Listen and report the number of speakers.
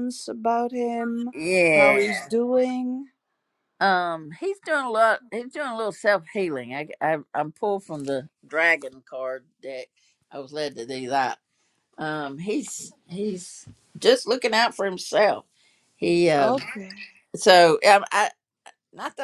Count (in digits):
2